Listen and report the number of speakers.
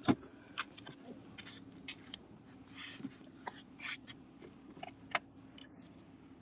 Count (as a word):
zero